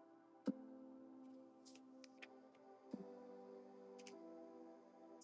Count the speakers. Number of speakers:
zero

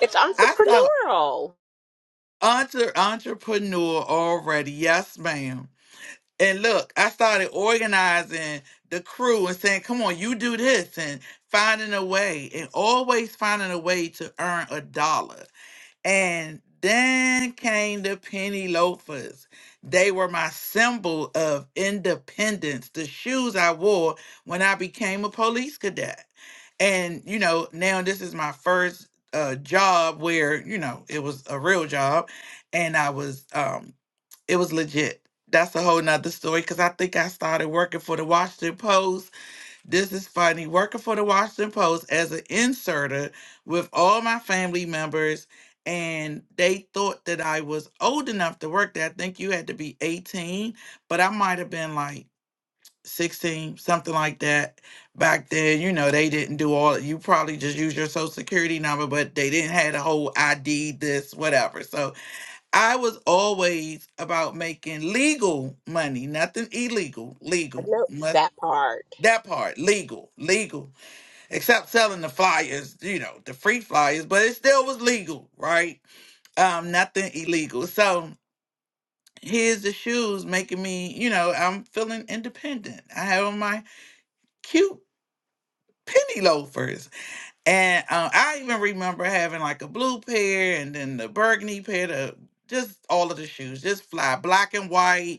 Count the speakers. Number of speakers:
two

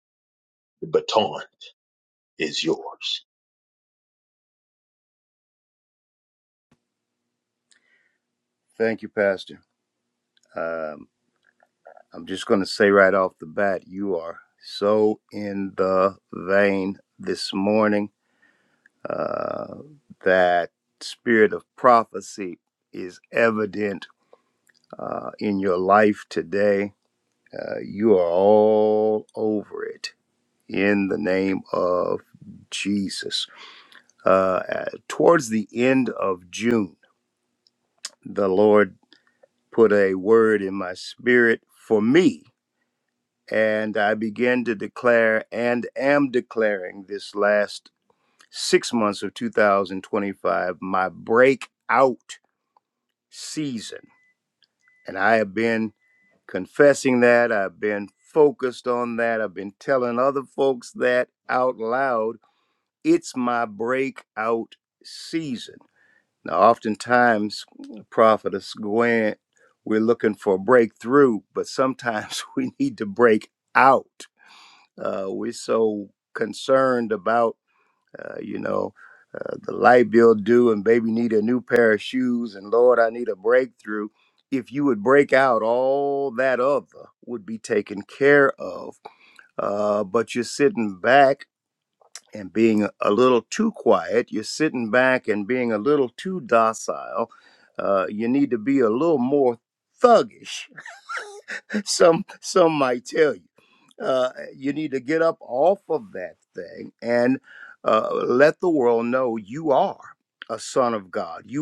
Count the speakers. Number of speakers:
two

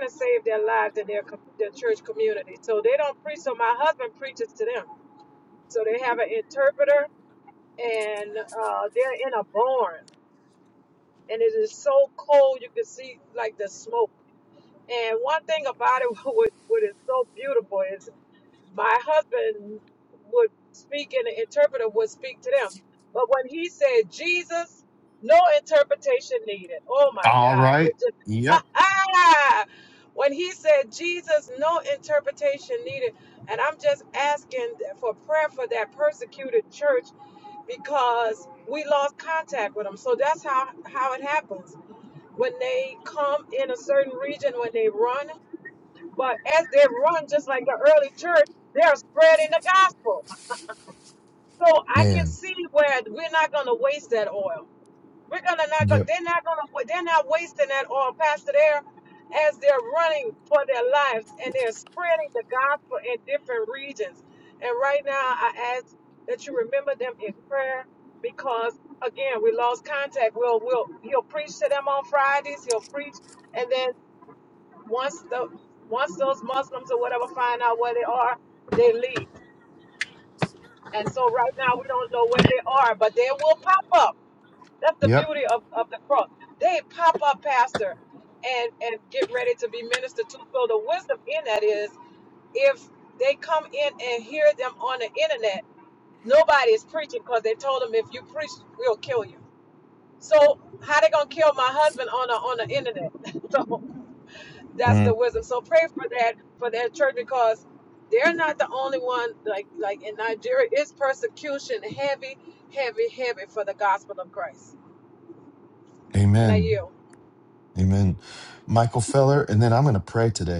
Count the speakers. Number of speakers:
two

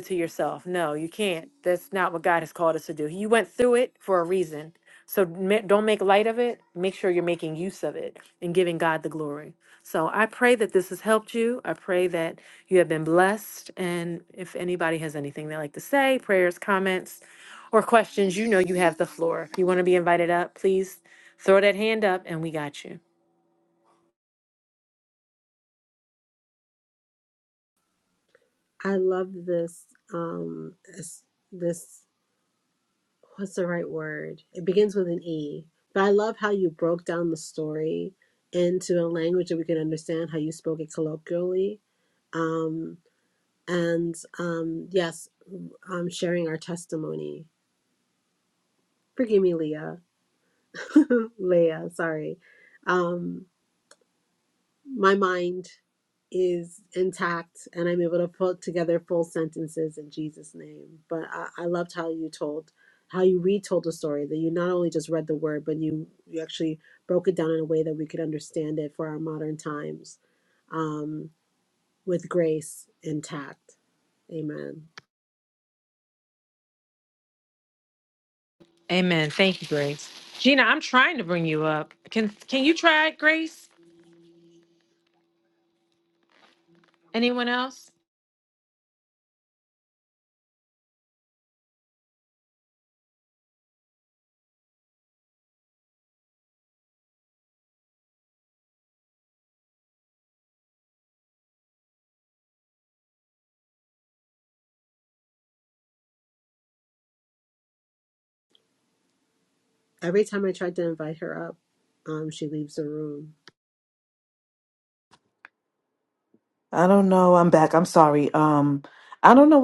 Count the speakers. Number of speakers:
three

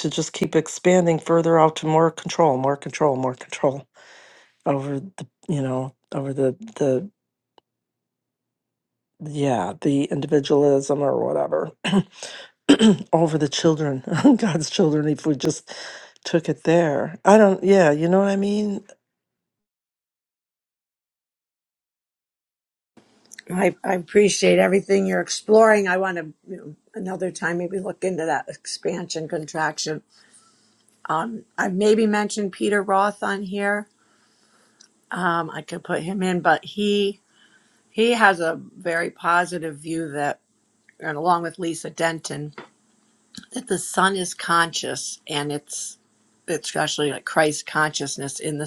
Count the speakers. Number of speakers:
two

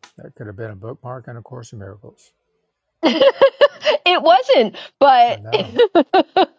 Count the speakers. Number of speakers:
two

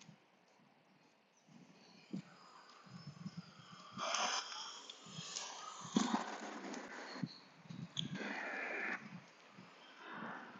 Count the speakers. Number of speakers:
zero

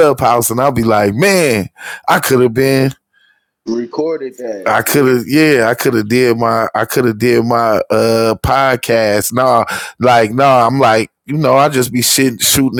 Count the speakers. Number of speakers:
two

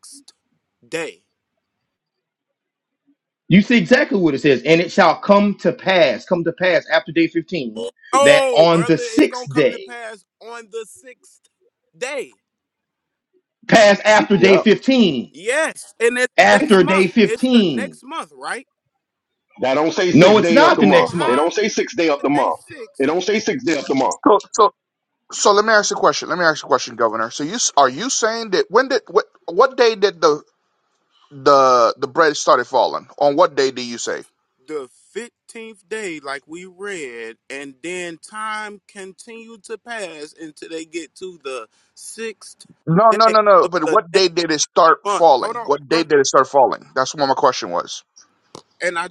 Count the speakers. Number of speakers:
four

